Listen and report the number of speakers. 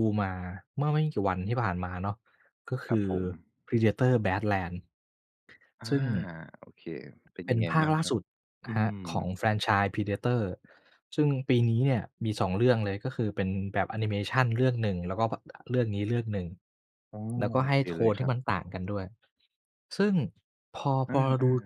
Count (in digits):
2